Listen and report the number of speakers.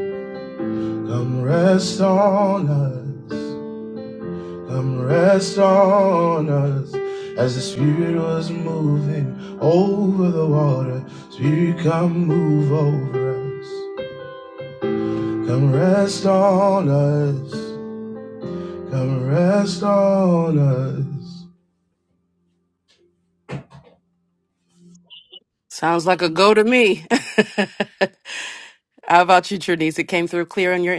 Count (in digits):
2